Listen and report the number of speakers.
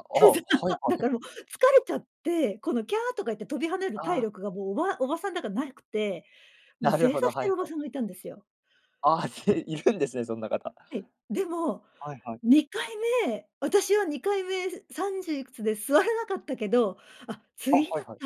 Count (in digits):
2